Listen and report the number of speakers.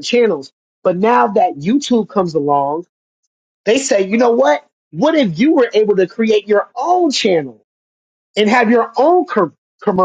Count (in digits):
1